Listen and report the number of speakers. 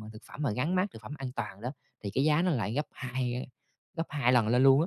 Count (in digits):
1